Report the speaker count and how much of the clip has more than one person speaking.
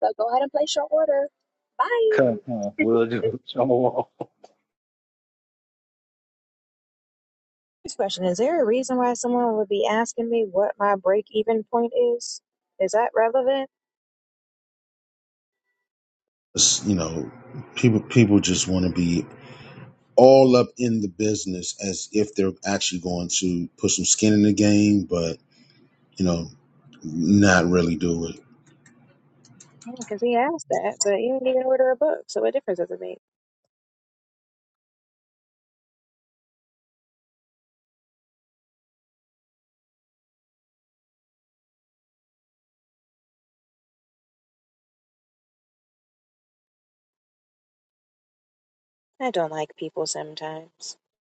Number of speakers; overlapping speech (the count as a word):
three, about 1%